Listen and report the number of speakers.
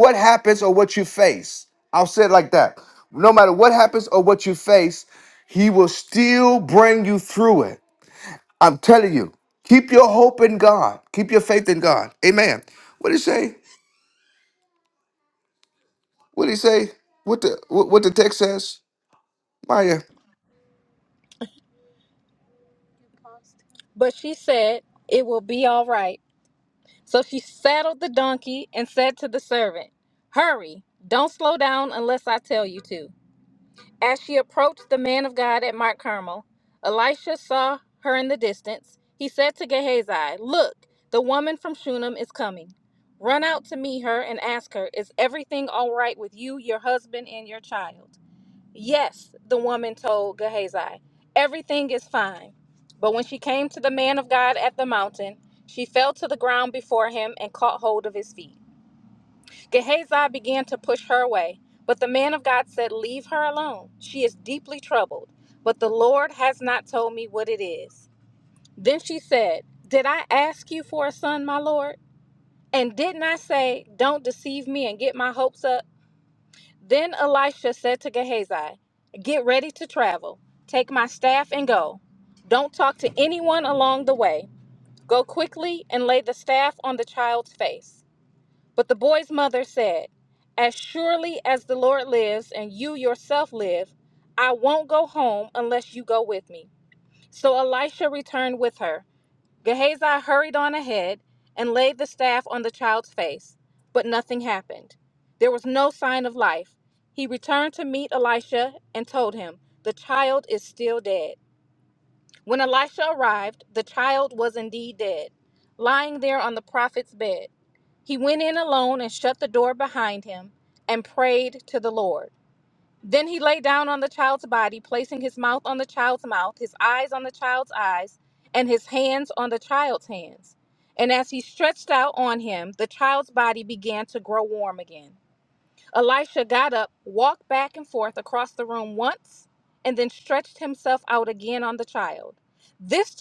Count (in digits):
2